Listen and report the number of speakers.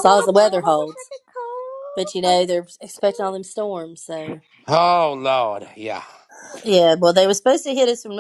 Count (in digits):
3